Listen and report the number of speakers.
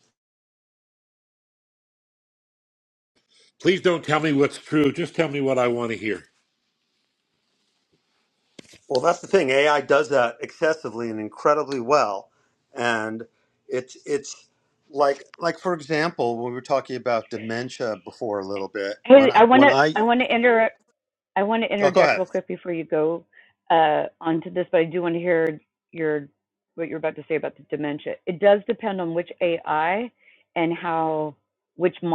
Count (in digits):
3